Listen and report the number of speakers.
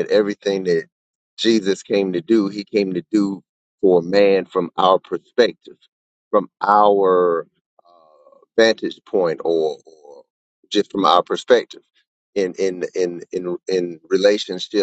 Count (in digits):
1